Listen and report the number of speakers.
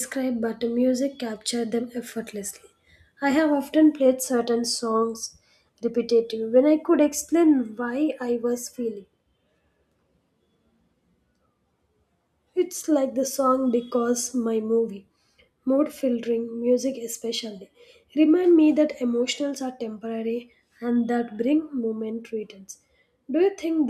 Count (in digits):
1